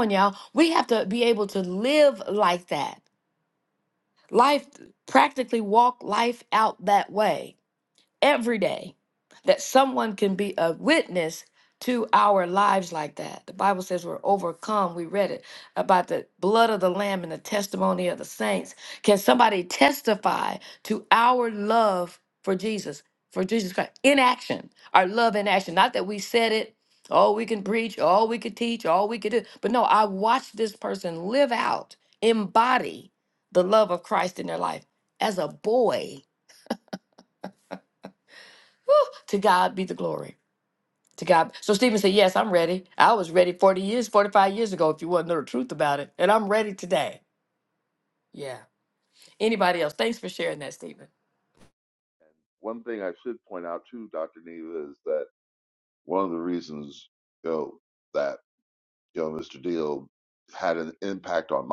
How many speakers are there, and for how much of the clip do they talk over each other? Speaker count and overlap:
two, no overlap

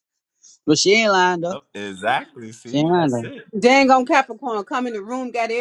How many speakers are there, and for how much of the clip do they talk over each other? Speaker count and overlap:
three, about 10%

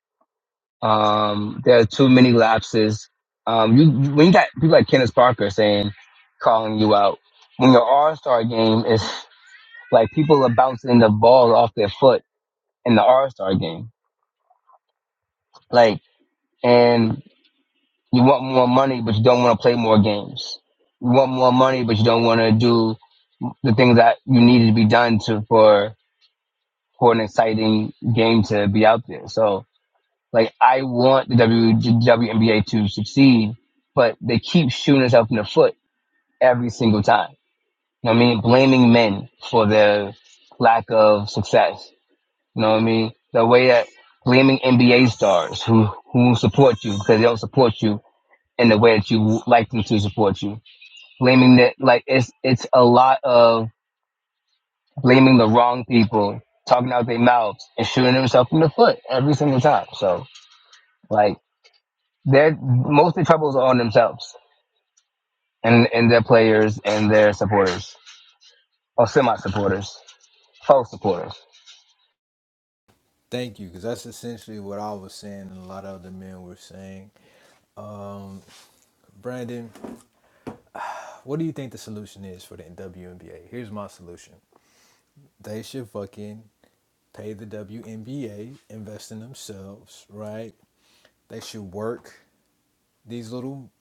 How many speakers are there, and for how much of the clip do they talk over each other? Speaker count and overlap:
two, no overlap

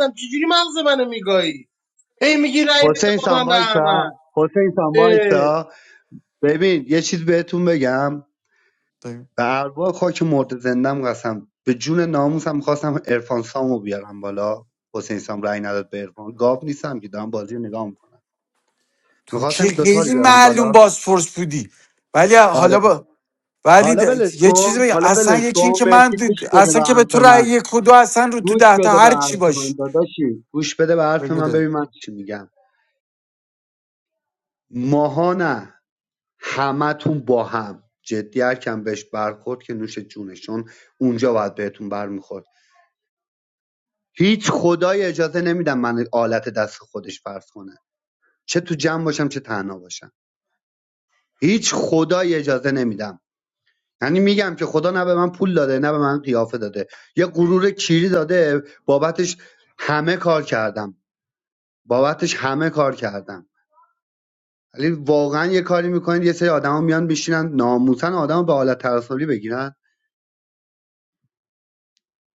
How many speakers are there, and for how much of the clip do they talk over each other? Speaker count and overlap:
three, about 12%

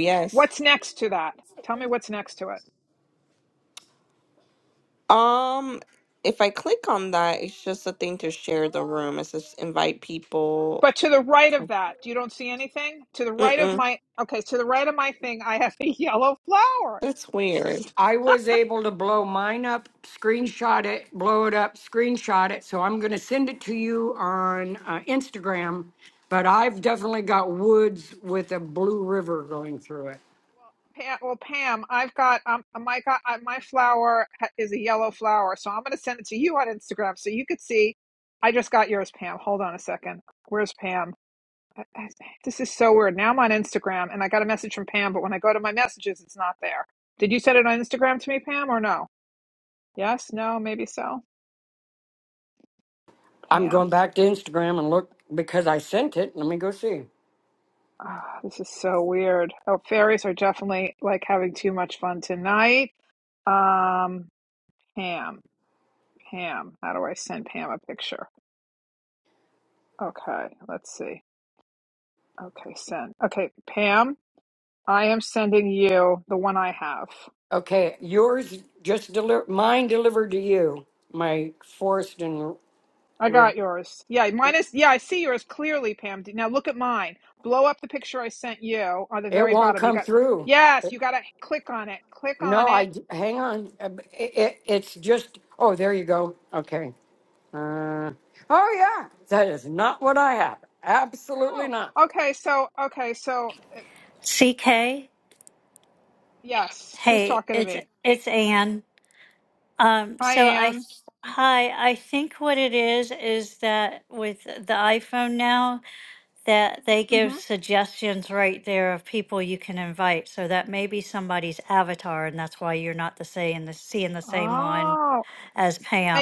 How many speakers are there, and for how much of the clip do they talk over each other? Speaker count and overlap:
four, about 4%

